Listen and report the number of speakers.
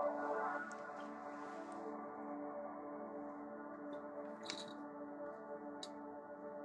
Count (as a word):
zero